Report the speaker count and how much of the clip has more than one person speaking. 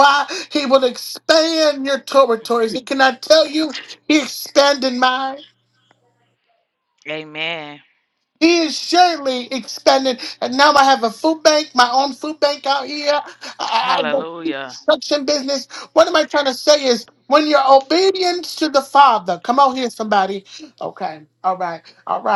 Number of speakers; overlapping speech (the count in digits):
2, about 4%